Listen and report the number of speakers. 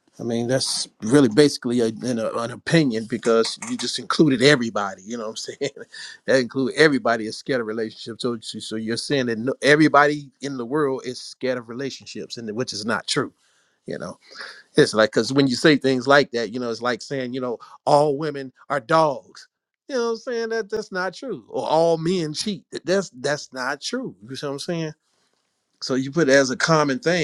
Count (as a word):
one